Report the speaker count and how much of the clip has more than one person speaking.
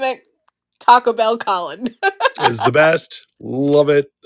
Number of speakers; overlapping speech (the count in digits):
2, no overlap